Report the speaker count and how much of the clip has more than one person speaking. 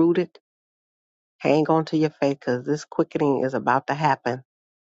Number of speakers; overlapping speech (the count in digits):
1, no overlap